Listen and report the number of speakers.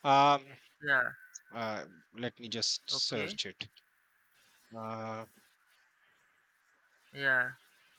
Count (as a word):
two